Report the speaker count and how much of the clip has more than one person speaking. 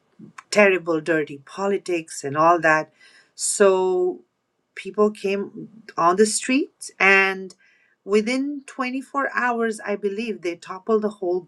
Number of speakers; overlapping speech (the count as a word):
one, no overlap